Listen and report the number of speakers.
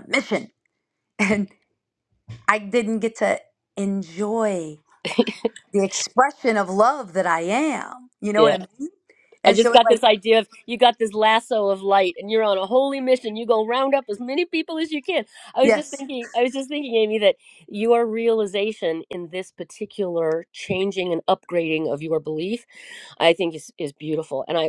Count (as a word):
two